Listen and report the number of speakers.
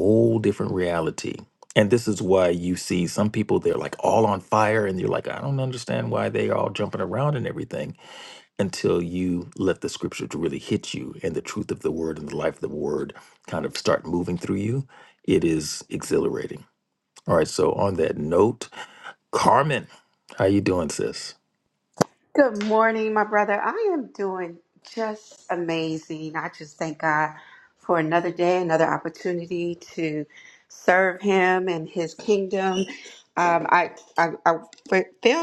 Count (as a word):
two